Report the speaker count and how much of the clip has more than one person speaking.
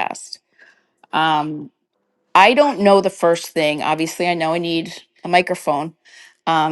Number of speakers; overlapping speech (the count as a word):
one, no overlap